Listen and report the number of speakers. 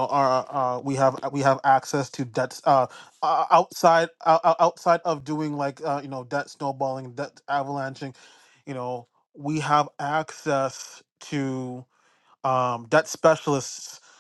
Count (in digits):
1